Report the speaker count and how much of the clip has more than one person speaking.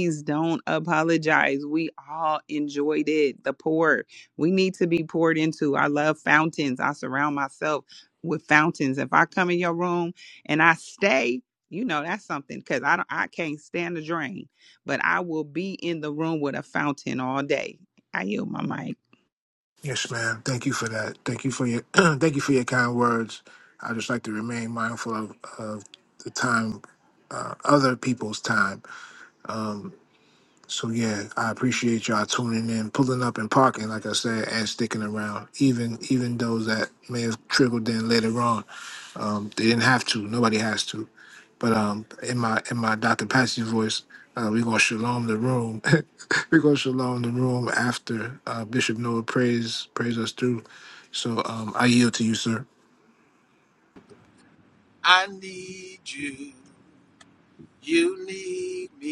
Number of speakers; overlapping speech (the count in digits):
3, no overlap